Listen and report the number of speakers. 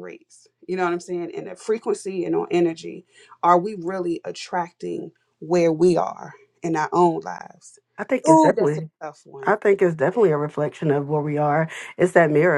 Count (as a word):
two